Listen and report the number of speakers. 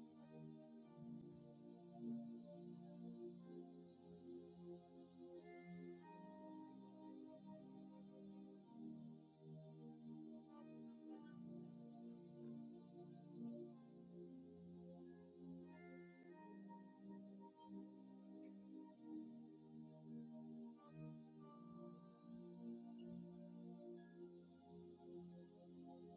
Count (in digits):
0